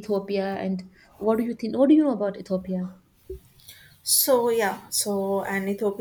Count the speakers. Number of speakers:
two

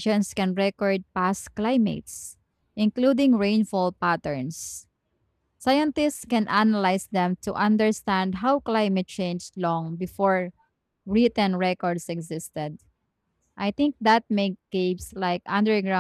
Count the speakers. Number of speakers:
one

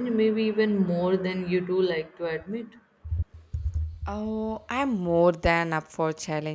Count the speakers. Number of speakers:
two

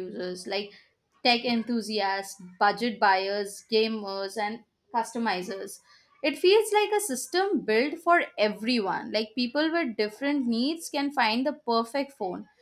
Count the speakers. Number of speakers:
one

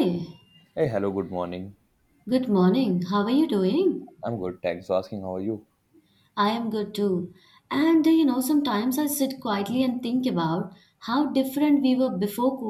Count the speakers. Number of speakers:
two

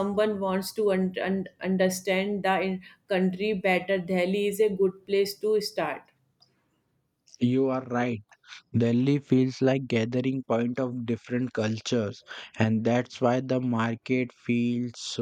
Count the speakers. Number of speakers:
two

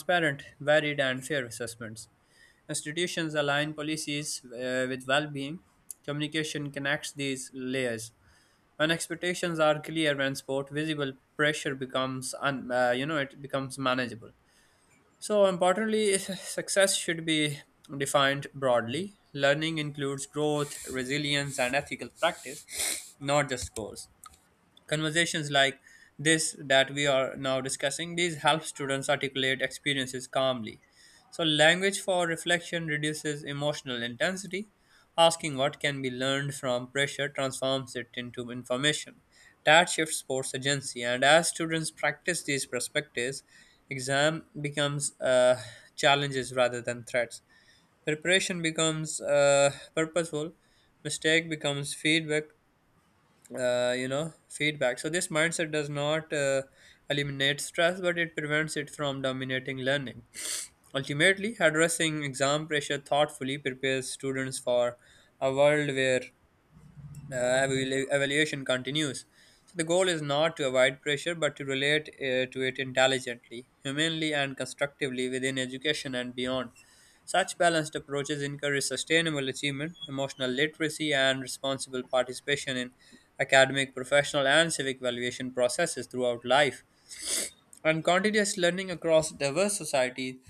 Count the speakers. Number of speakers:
one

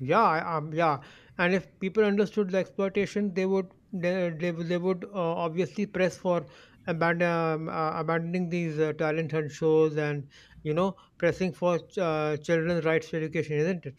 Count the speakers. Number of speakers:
one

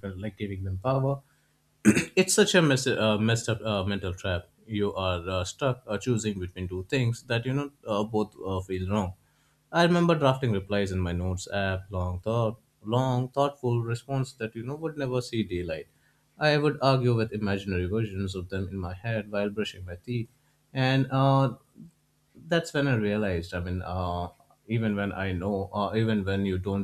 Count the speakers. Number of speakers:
one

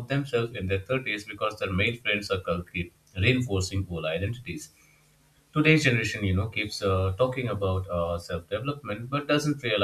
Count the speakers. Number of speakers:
one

